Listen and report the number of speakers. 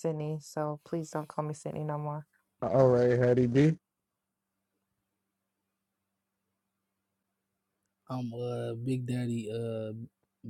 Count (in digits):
3